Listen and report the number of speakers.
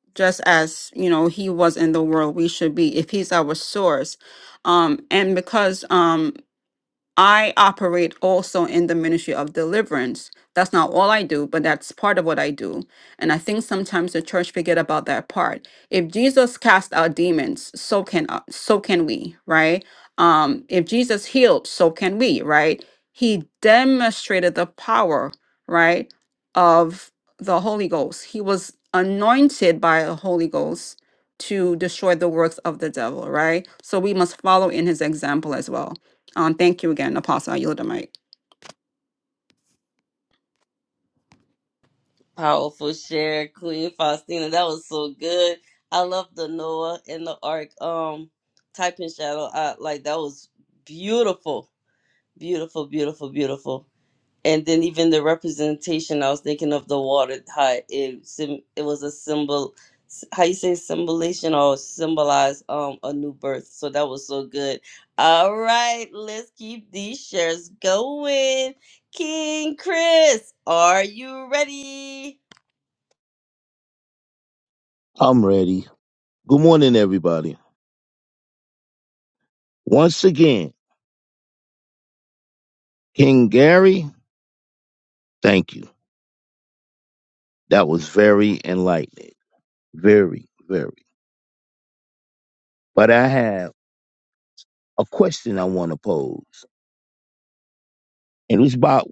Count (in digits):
3